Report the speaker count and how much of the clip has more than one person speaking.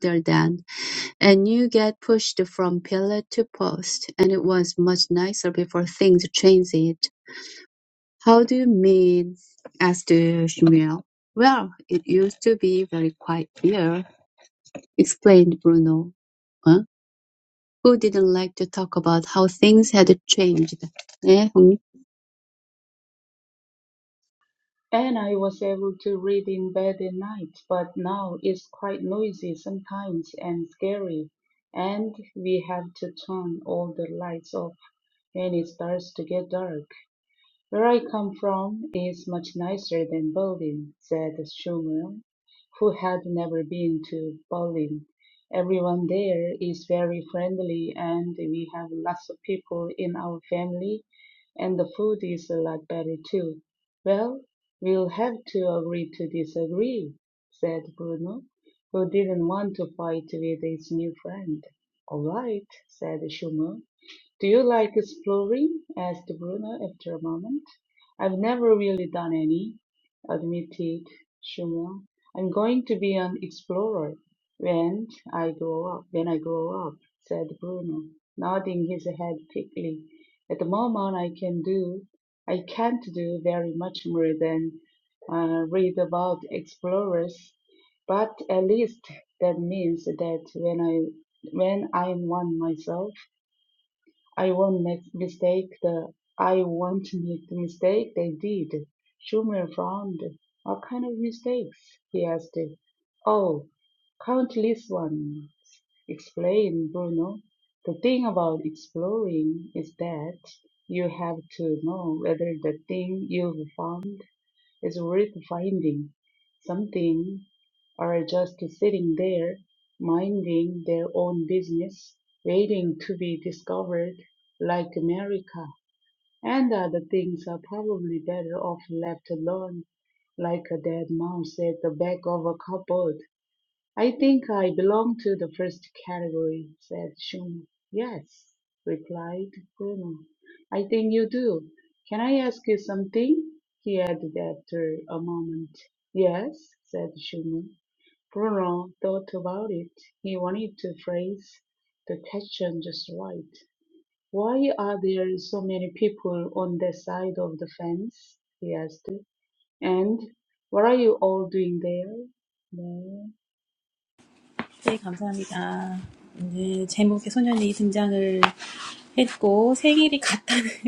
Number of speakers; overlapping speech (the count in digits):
3, no overlap